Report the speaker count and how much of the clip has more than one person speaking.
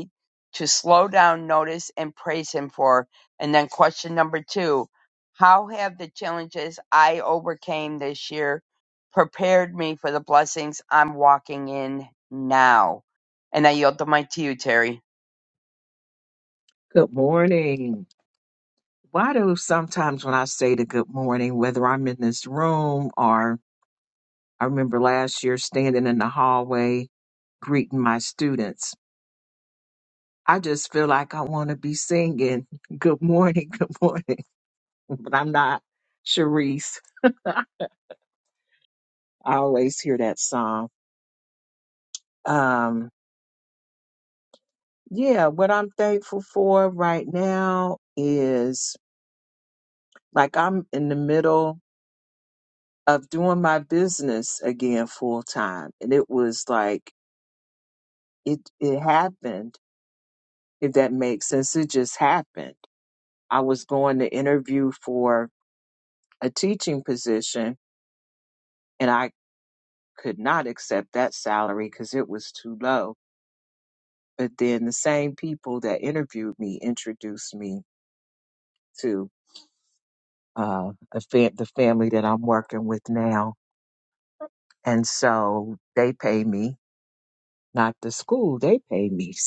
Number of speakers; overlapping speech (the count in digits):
2, no overlap